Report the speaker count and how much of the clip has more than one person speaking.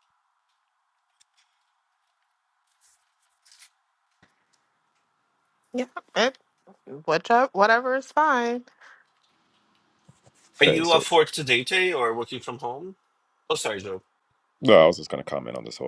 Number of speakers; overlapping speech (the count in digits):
3, about 3%